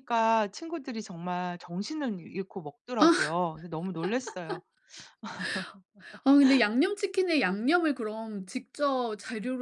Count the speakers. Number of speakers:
two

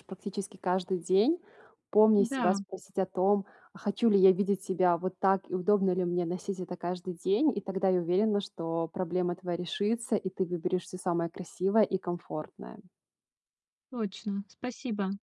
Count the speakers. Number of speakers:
two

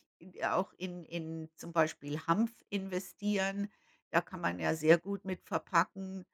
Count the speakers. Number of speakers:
one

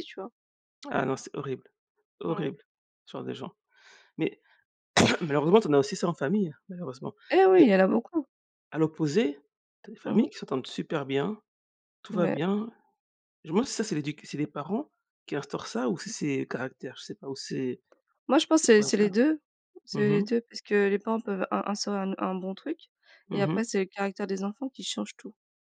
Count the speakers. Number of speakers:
two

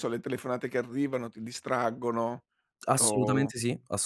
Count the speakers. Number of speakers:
two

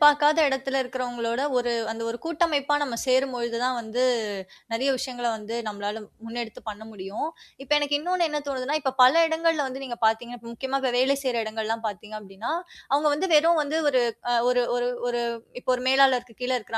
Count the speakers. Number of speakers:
one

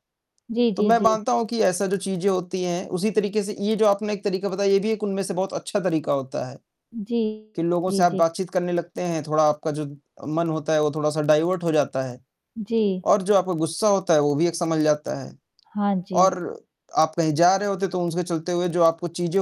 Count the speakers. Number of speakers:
two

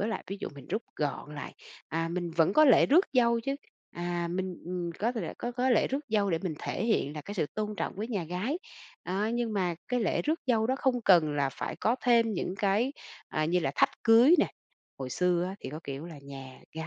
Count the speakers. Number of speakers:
one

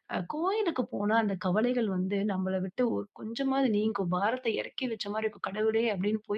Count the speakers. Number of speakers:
one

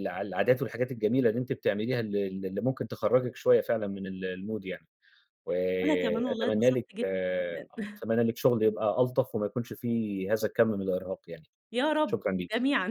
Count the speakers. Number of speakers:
two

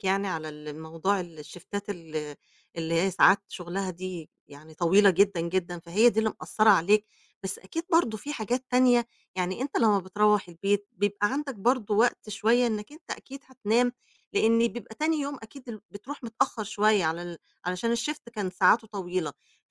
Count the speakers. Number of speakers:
one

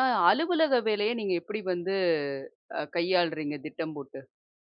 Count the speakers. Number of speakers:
one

